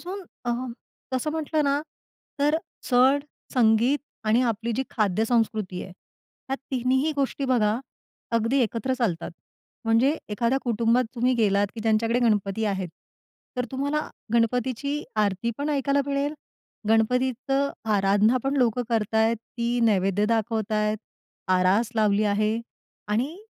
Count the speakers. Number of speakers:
1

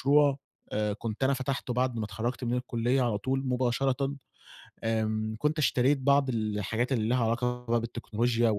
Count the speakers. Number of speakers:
1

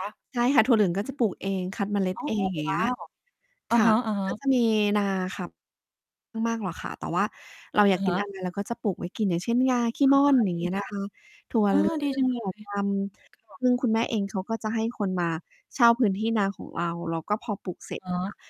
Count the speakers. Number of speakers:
2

